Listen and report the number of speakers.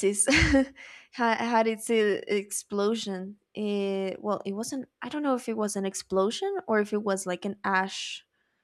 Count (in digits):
1